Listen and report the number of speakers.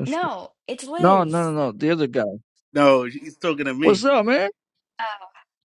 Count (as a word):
three